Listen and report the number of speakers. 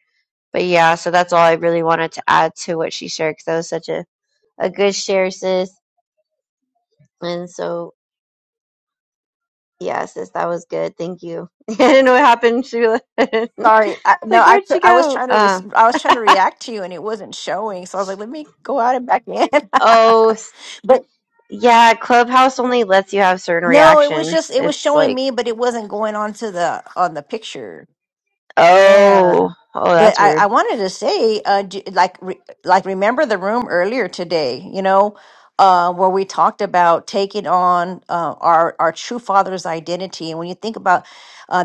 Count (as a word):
two